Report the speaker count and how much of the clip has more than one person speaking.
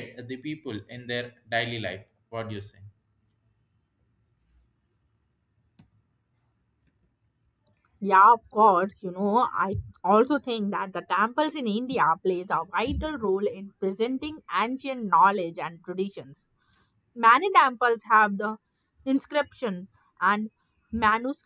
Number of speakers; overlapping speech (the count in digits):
2, no overlap